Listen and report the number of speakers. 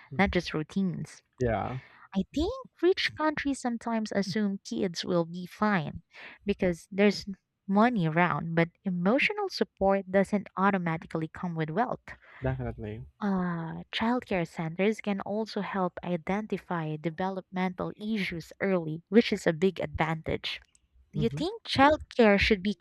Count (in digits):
2